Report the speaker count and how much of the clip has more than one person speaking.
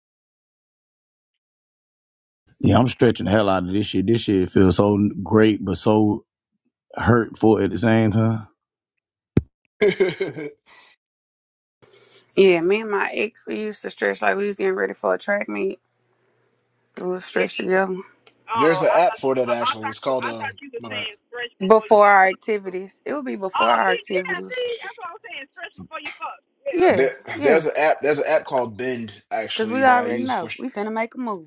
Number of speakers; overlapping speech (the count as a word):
four, about 20%